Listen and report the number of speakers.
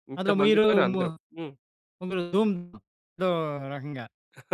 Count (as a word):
two